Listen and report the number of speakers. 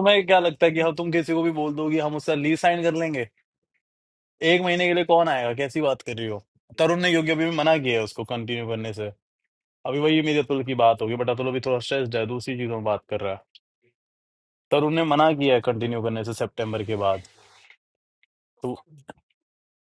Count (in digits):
1